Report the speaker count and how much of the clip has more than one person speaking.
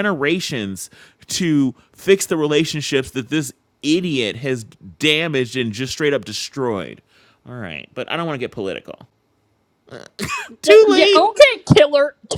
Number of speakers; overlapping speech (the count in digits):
2, about 5%